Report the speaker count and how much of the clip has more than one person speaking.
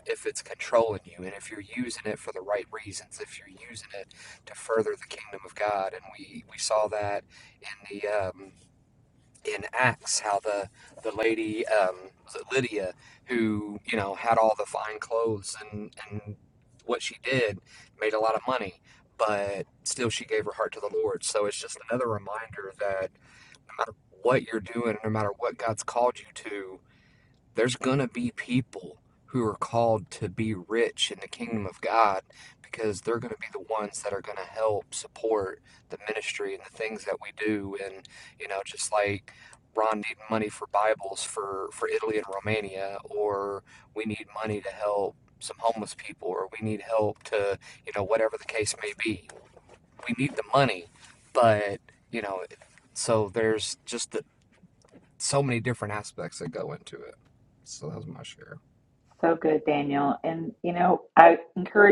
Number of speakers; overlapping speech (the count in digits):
2, no overlap